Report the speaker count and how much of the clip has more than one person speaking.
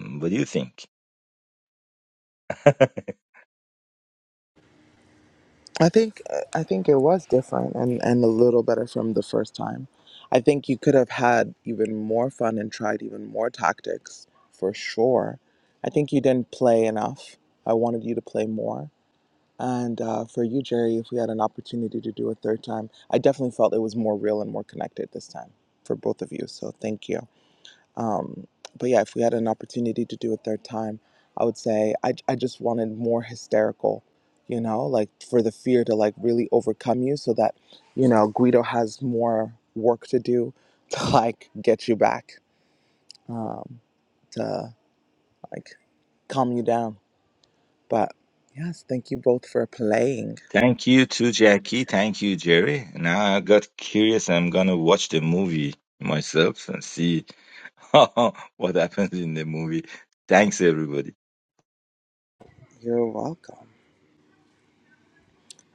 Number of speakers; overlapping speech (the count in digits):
2, no overlap